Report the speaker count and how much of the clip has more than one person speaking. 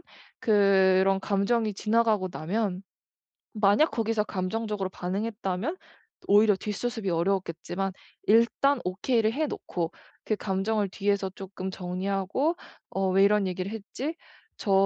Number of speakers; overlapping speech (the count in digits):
1, no overlap